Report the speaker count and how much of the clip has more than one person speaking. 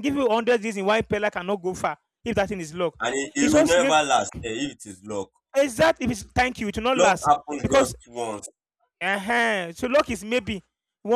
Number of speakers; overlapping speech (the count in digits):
2, about 12%